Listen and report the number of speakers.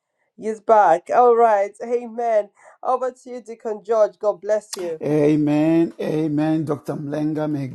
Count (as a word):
two